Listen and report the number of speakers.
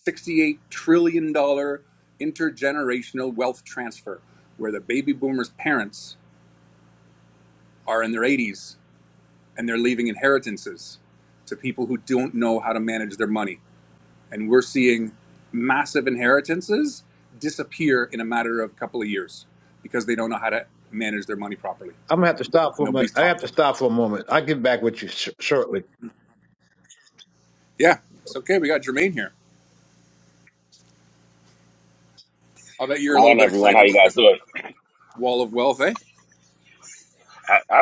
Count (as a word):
three